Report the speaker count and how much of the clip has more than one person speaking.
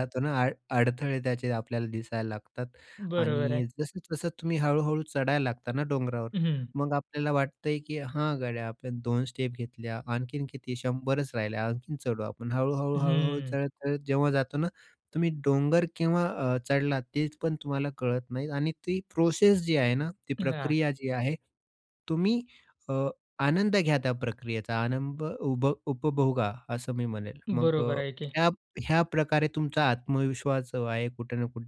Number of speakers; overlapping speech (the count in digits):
2, about 6%